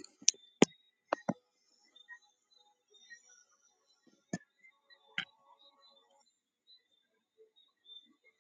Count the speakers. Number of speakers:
0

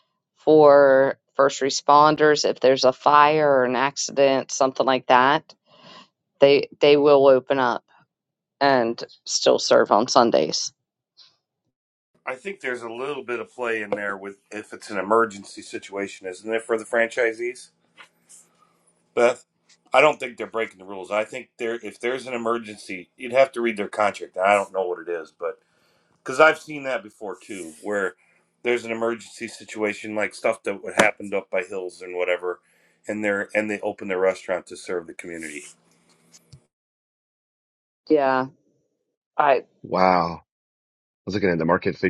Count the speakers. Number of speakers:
3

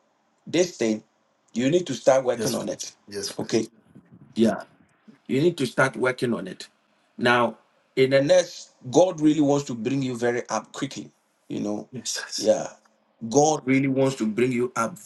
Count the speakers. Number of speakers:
2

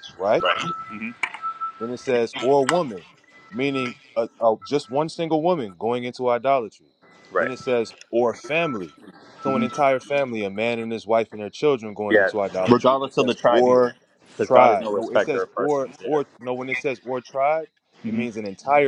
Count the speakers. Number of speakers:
2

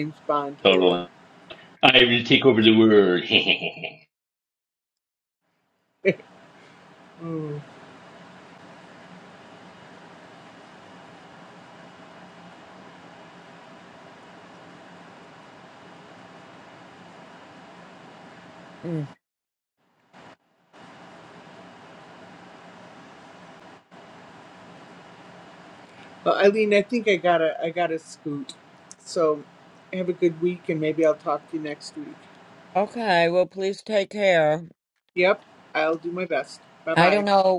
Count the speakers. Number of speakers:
3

